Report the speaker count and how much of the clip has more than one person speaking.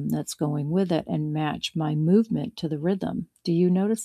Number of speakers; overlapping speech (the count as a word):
one, no overlap